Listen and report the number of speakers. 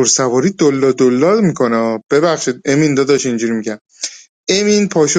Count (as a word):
one